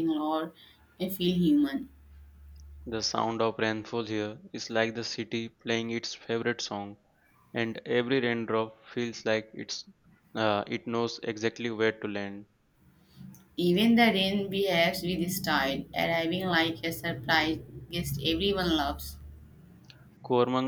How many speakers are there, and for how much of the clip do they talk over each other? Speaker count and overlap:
2, no overlap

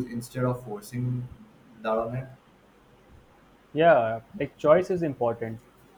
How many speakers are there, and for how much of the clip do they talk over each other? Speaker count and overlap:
2, no overlap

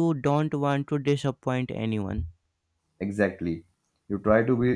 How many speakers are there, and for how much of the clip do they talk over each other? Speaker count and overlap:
2, no overlap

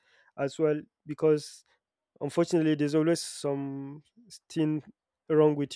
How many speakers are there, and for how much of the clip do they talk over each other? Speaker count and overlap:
1, no overlap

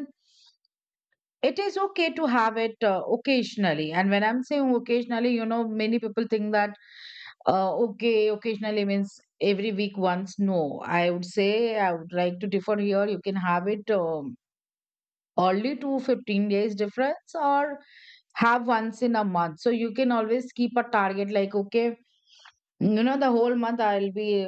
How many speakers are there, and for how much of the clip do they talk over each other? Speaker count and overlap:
1, no overlap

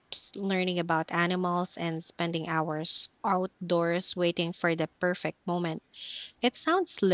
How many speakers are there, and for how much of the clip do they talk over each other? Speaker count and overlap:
1, no overlap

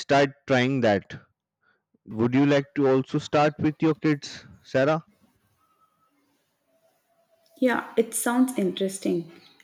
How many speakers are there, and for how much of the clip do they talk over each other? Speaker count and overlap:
2, no overlap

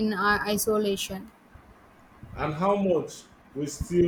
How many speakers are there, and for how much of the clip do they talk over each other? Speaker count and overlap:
2, no overlap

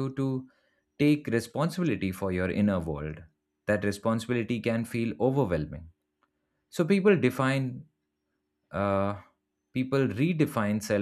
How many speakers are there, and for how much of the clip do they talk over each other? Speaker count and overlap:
1, no overlap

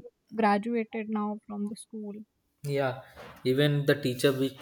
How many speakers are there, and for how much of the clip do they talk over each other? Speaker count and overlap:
2, no overlap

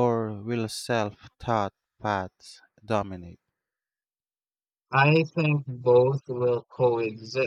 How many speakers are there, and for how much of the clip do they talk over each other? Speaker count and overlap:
2, no overlap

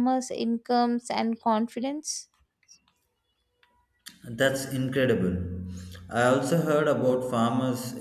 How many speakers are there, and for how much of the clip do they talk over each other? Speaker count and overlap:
2, no overlap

